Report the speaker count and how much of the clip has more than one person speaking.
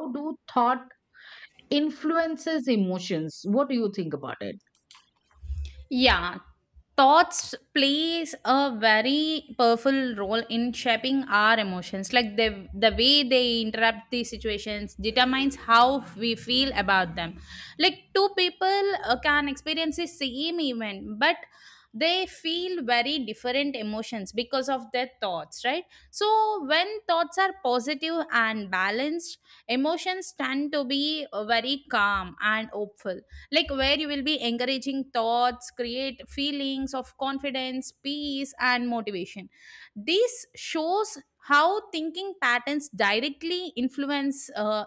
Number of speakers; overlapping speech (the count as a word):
two, no overlap